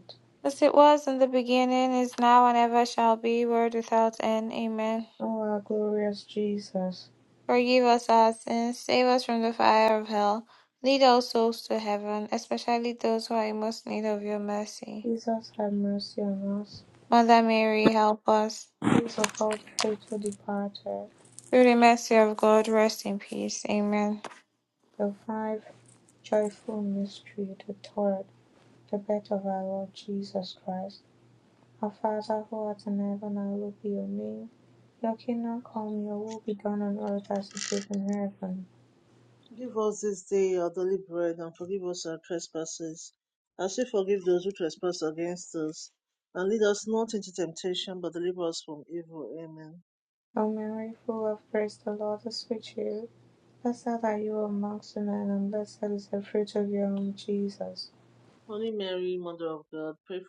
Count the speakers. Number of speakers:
3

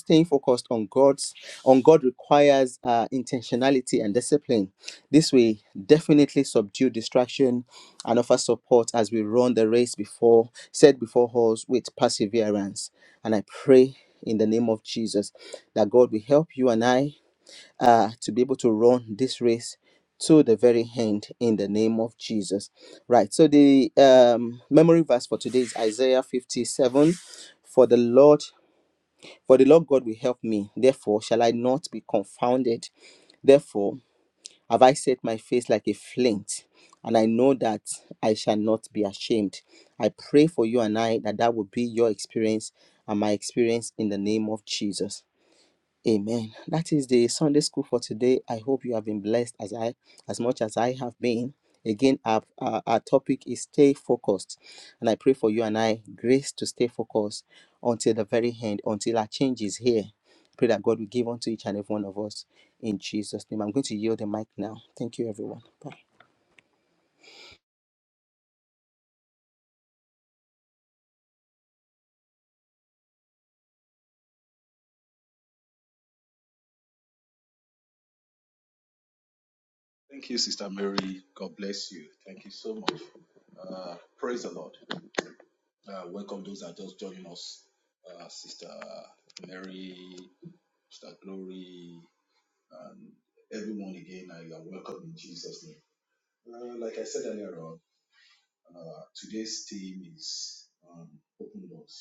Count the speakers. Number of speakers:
2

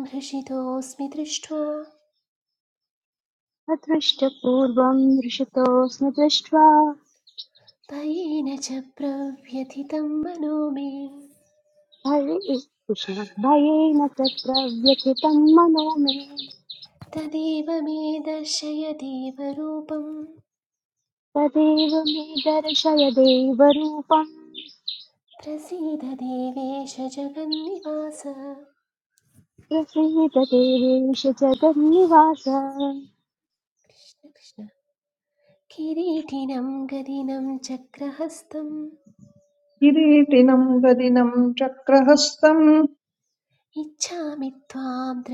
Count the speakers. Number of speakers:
3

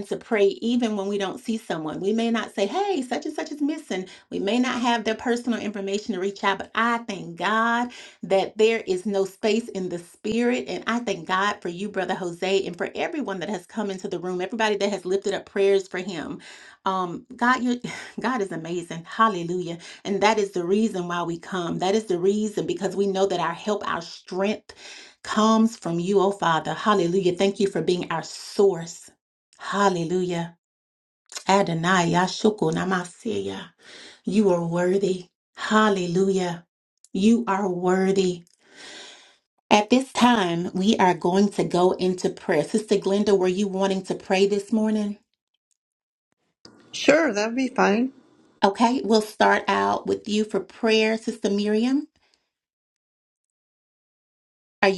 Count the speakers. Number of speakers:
2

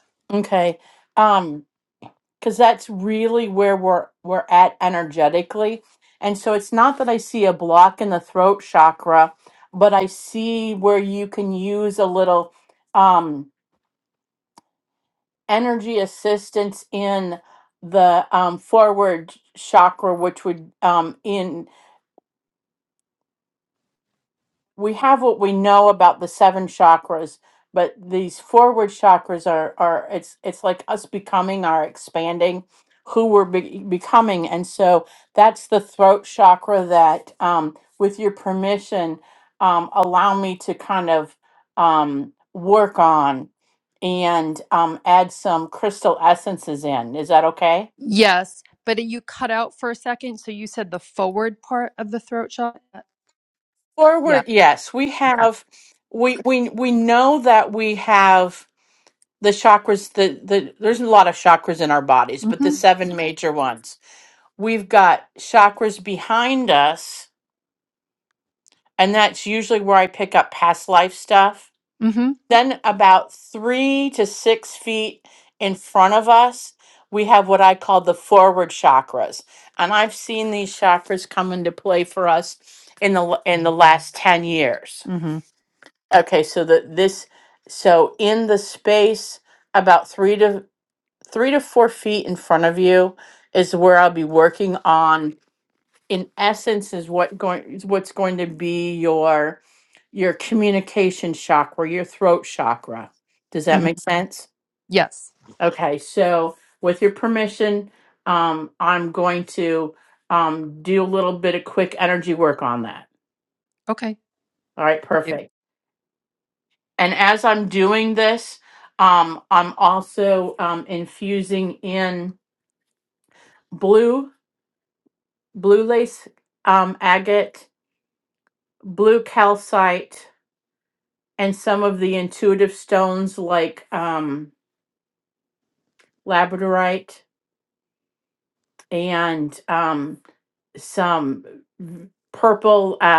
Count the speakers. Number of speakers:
2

